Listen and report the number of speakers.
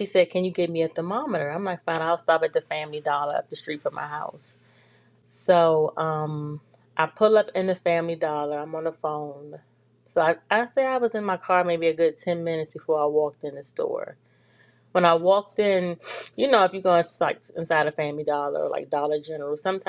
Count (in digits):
1